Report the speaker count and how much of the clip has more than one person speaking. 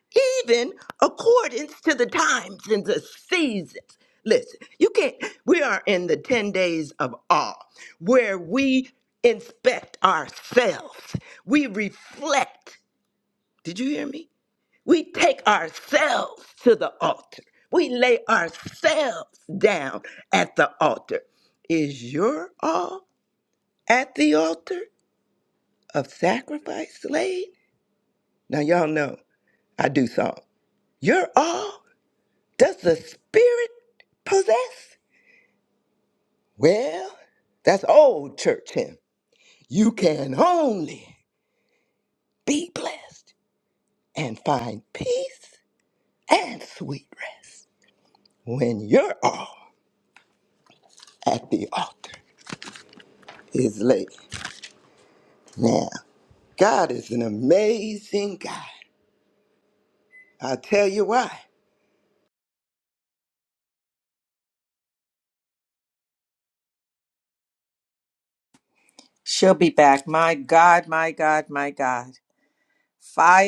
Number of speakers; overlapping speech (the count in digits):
2, no overlap